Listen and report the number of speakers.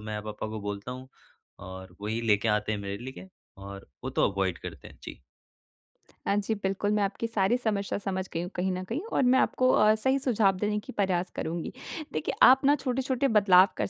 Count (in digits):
2